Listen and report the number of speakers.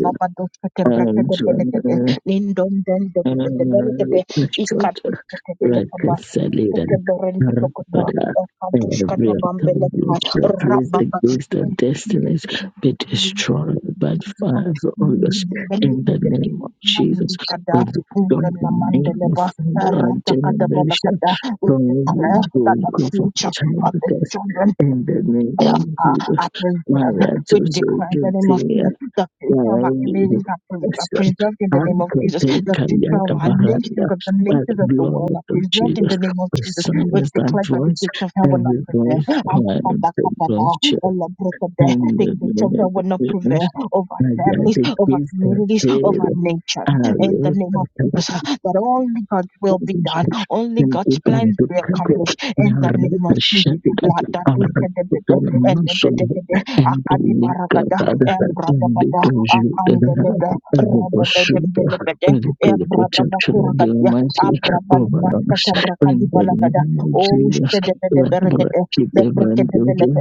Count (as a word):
two